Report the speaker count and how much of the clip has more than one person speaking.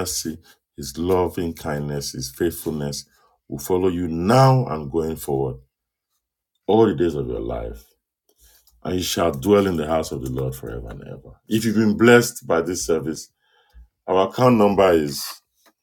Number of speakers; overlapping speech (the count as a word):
one, no overlap